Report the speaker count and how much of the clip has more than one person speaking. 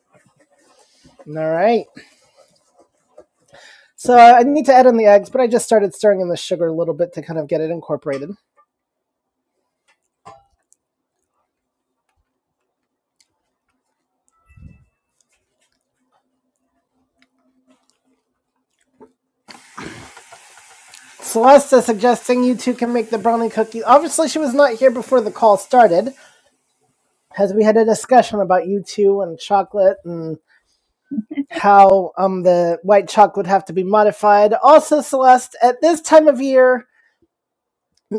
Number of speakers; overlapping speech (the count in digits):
1, no overlap